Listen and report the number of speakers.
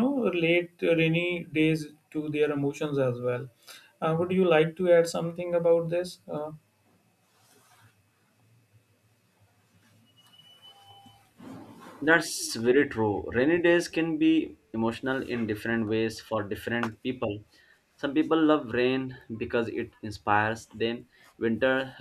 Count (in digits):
2